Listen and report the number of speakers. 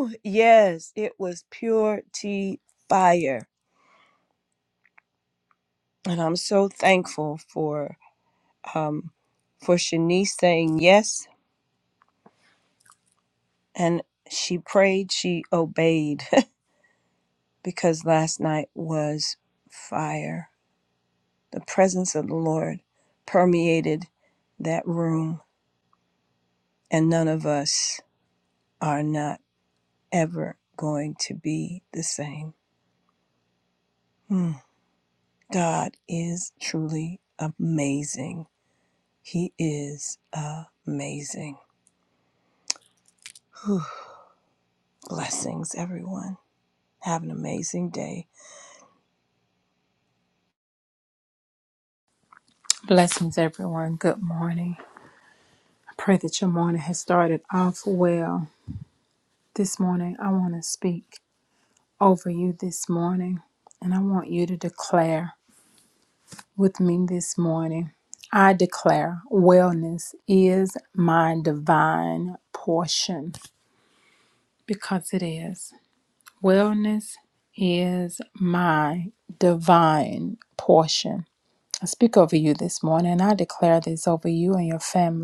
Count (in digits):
2